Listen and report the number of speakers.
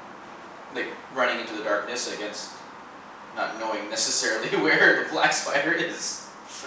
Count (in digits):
1